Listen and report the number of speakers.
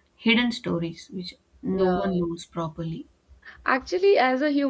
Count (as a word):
two